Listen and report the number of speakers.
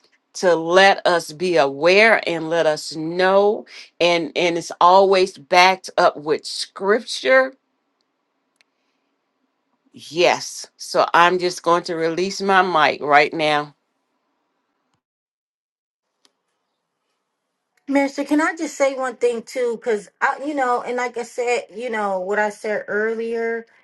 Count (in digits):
2